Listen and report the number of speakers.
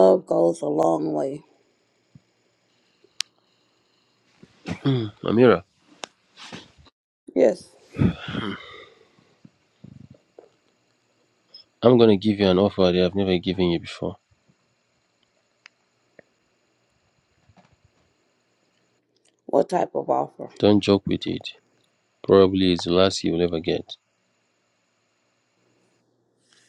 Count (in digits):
2